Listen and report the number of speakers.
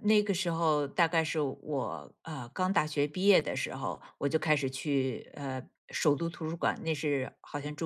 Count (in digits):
1